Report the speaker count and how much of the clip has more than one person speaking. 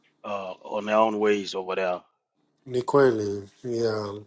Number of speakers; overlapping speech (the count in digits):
2, no overlap